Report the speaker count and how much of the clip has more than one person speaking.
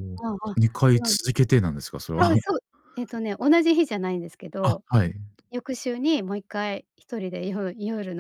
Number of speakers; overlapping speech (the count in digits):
2, about 5%